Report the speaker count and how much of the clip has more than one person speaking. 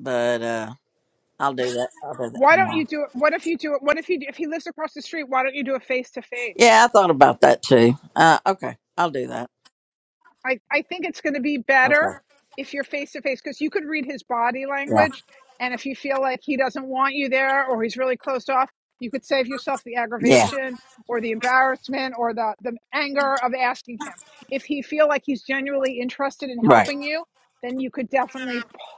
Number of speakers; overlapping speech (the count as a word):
two, about 6%